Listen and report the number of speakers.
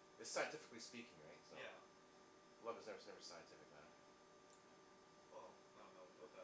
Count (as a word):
two